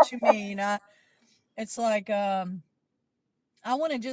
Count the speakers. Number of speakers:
1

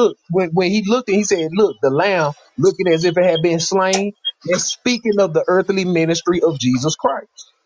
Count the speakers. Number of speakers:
1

